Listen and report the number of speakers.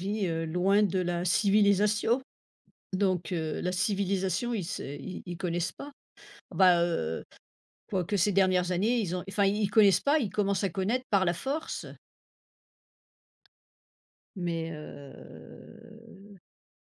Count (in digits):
1